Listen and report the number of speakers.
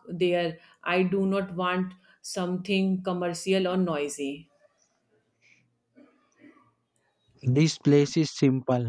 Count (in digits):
2